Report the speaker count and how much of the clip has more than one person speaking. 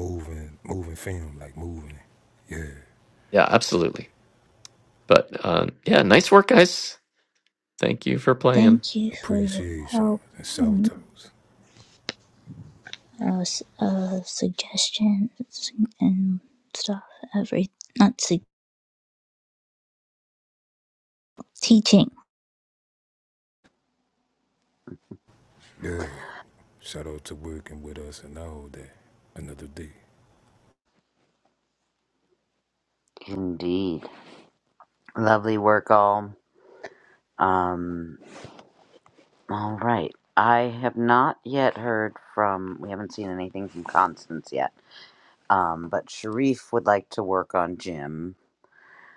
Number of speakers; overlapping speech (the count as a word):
four, about 3%